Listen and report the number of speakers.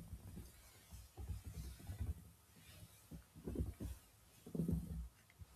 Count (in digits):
0